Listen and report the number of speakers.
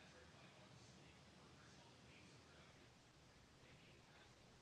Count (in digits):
0